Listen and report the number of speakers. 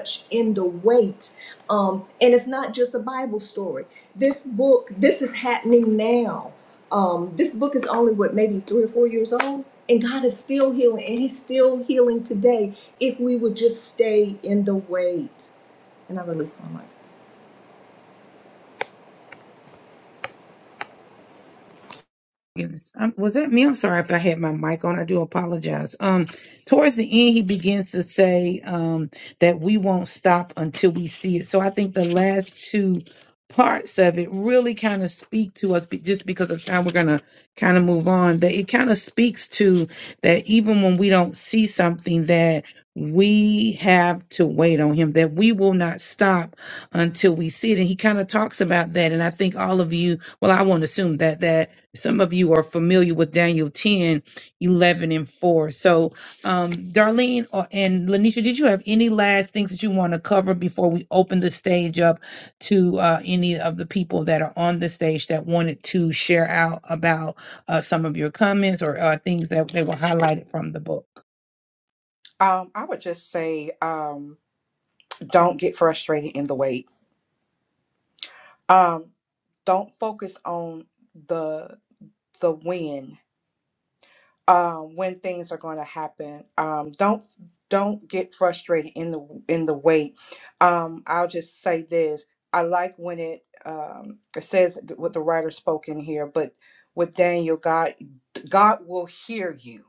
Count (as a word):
three